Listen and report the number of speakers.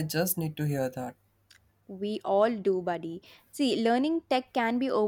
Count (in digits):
2